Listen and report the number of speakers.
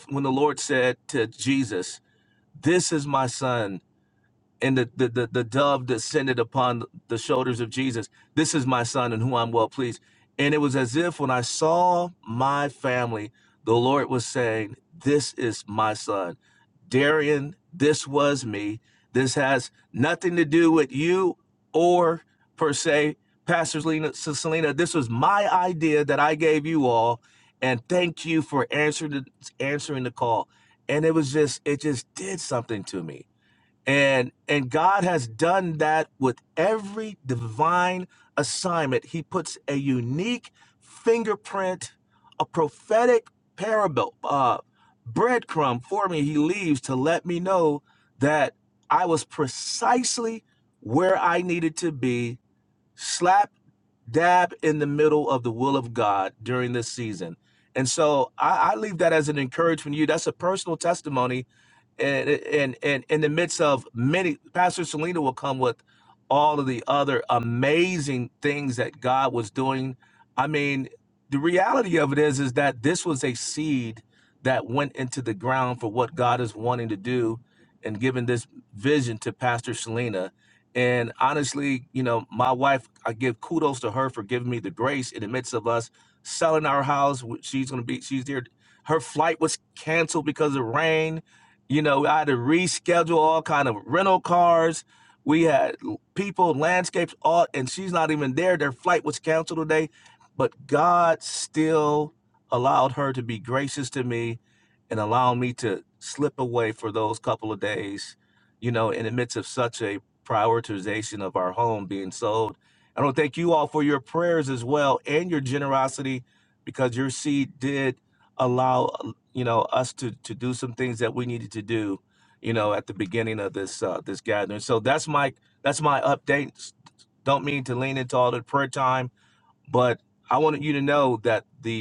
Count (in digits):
1